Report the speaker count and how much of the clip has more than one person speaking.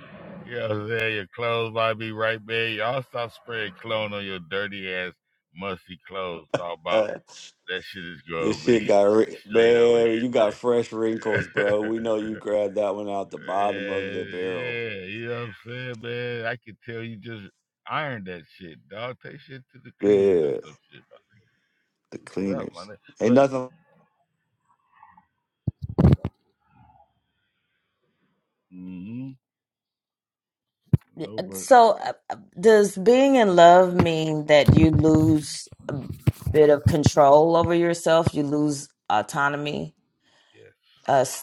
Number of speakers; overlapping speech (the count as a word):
three, about 10%